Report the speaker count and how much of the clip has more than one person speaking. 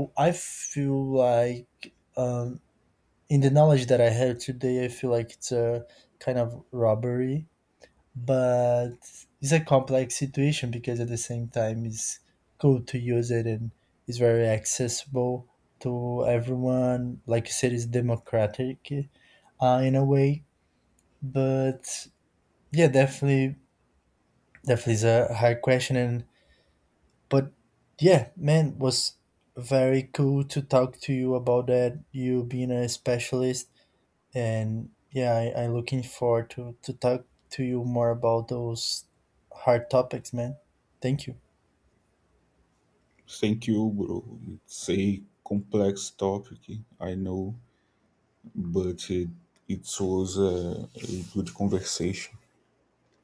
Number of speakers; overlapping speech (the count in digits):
2, no overlap